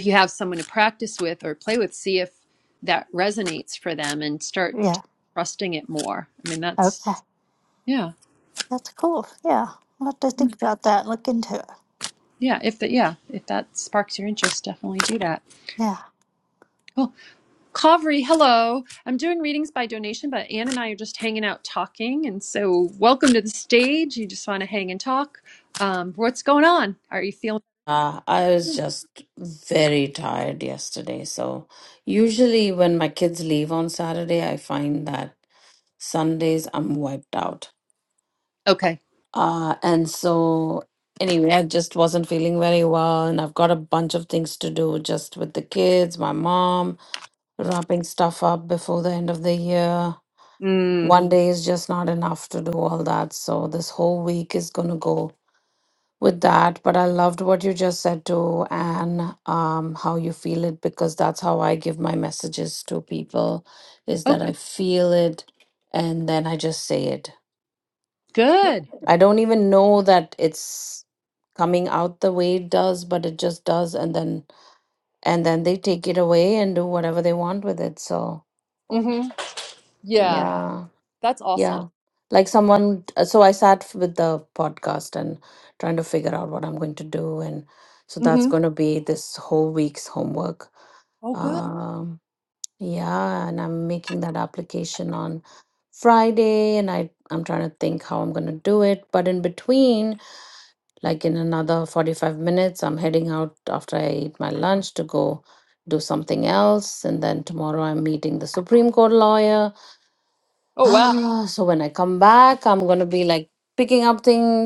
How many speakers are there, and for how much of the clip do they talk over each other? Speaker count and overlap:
three, about 2%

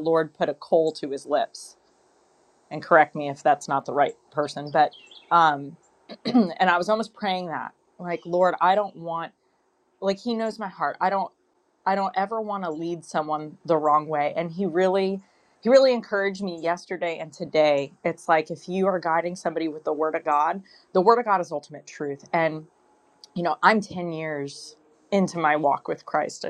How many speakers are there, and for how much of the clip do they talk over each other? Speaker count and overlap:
one, no overlap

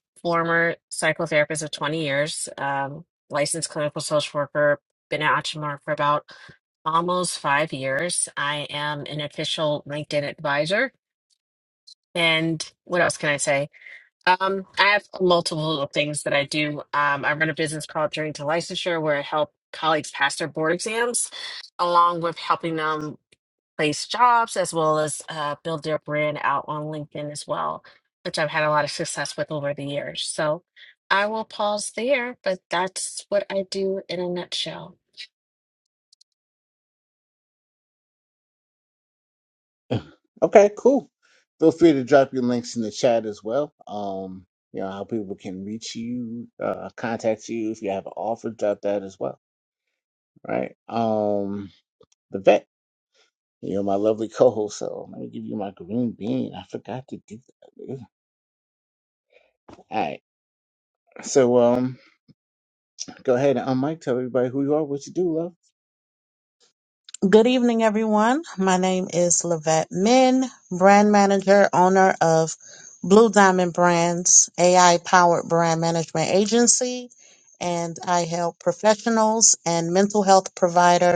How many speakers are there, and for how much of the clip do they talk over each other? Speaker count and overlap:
three, no overlap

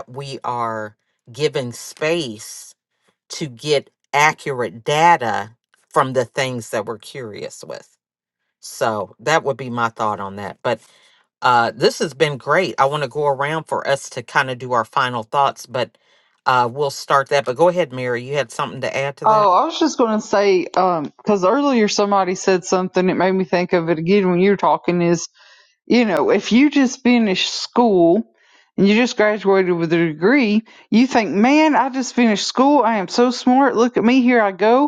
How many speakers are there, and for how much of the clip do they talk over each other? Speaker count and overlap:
two, about 1%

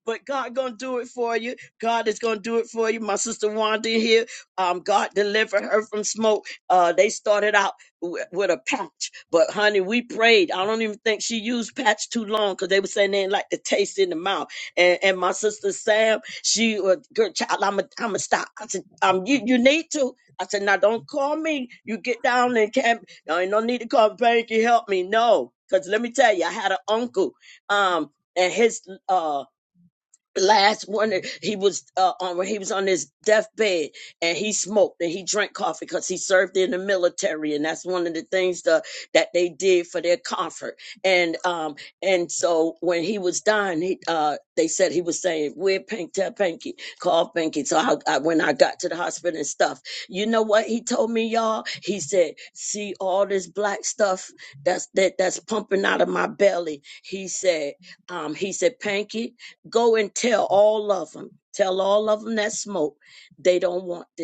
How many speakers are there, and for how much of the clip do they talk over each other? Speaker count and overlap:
one, no overlap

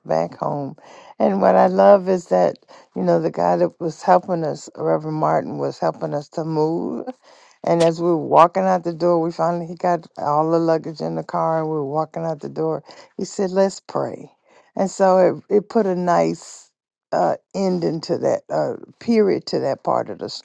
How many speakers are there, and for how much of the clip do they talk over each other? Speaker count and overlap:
one, no overlap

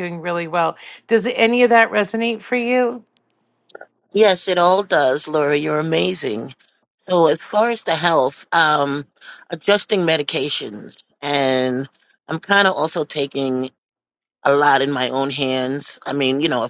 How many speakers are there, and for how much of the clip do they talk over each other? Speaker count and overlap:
two, no overlap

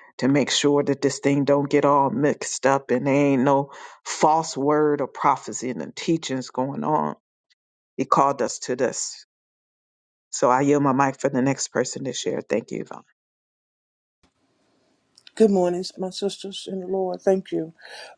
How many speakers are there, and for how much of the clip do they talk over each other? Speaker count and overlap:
two, no overlap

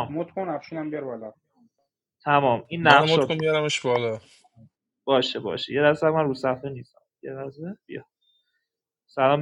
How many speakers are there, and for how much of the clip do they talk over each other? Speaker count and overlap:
three, about 8%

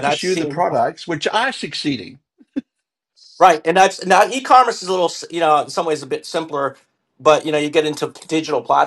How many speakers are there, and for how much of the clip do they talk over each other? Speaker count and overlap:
two, about 7%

